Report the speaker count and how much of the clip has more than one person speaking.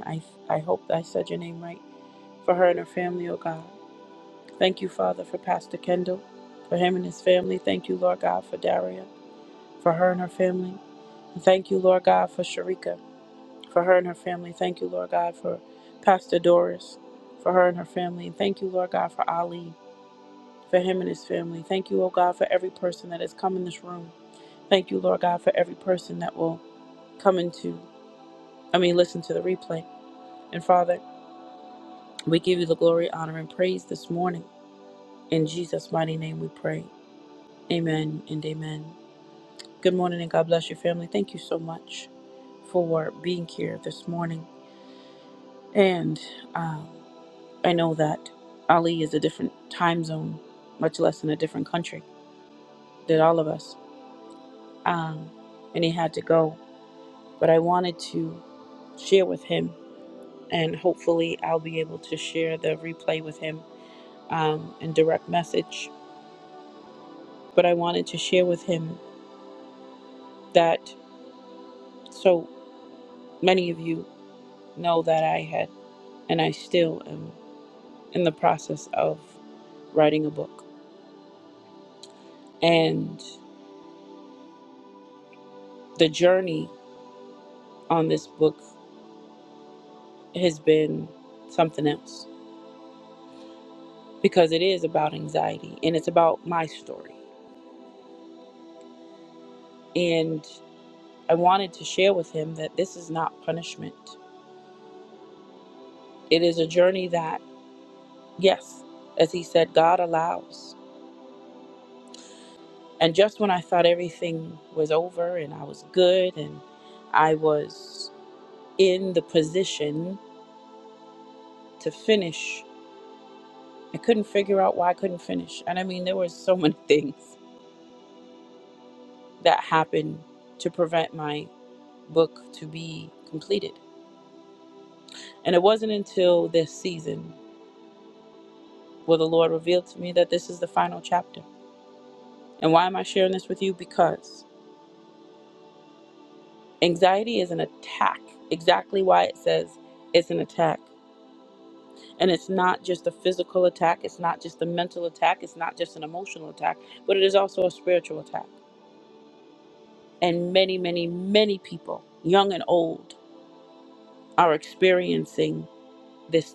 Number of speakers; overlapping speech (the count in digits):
1, no overlap